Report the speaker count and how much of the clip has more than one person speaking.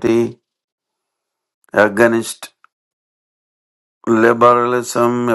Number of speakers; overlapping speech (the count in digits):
1, no overlap